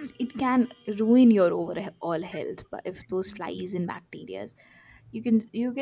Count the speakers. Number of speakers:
1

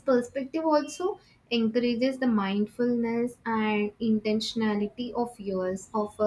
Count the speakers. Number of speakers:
1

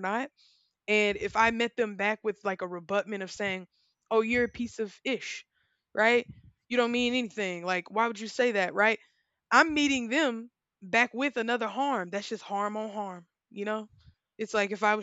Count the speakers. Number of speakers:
1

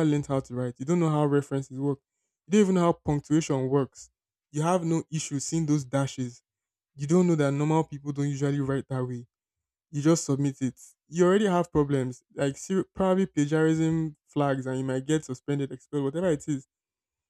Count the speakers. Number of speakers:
1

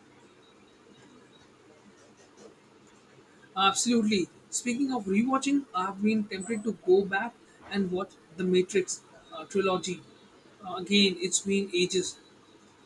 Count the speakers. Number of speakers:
1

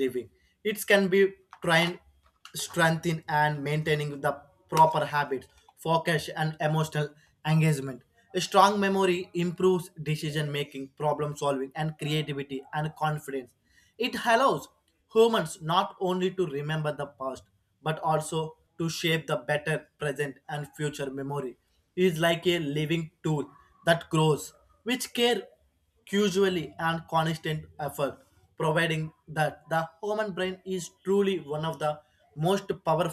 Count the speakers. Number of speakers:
1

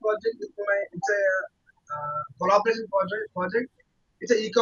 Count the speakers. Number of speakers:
1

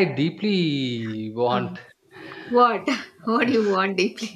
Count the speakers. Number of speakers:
2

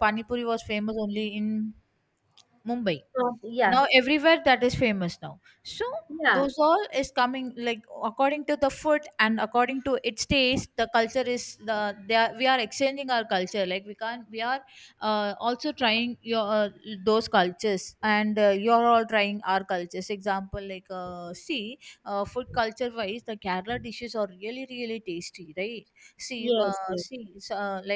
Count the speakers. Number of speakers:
2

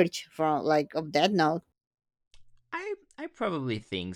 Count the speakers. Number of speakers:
2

